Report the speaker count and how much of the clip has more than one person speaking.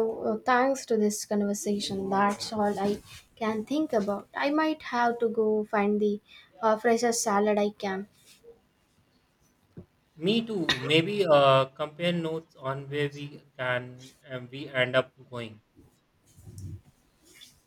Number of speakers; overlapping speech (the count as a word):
two, no overlap